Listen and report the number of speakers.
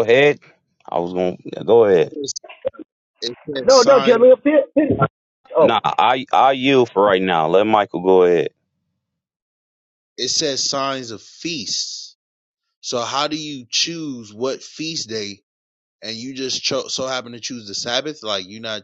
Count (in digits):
3